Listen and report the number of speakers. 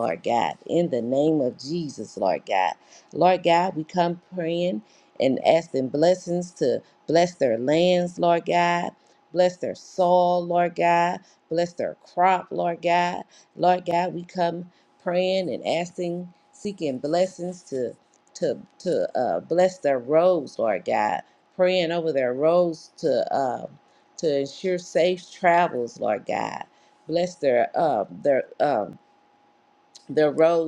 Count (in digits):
1